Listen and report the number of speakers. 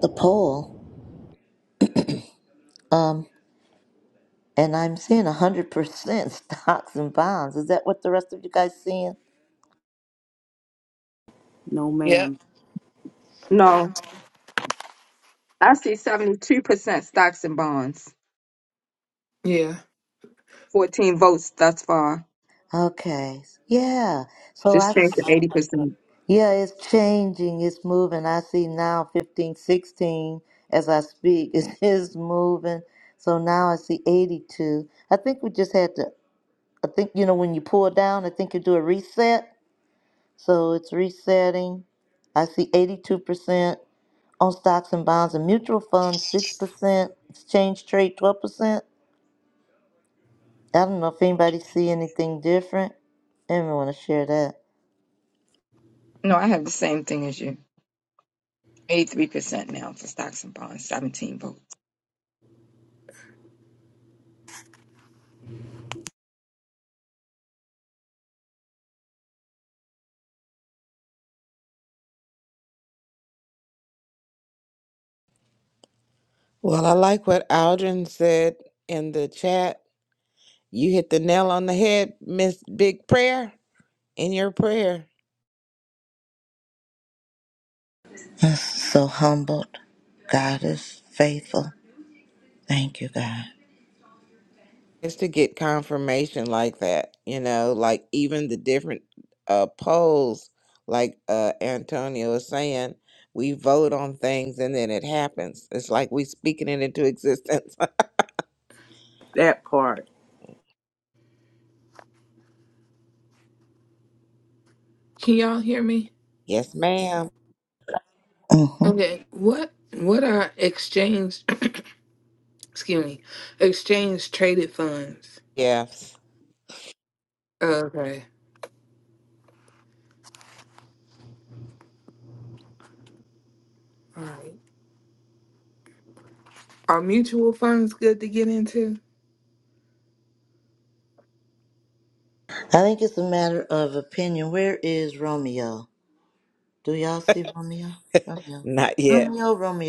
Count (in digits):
5